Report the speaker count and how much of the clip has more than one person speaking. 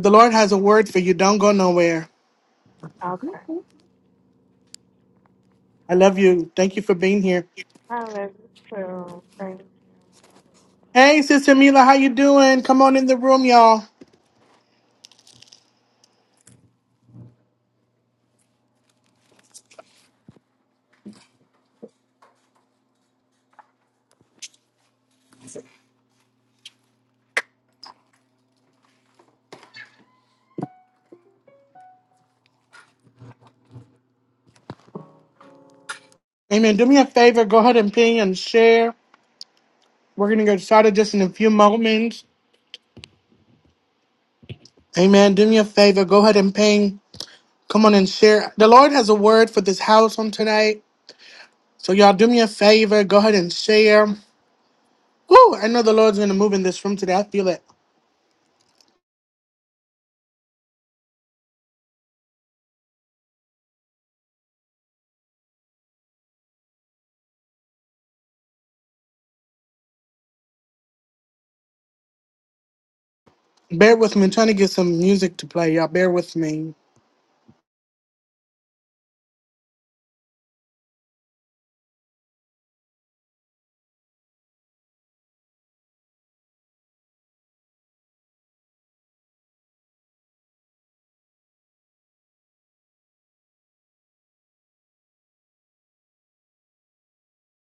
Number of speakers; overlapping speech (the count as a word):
two, no overlap